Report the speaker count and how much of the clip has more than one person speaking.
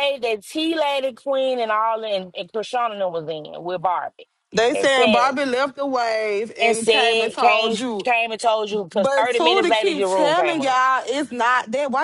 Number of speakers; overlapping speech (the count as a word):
two, about 32%